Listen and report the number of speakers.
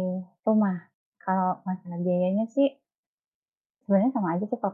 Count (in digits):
1